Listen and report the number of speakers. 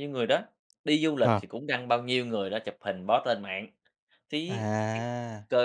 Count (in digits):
2